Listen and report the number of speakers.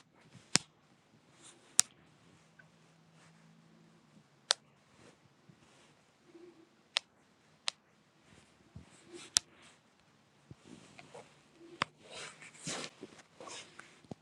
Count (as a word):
zero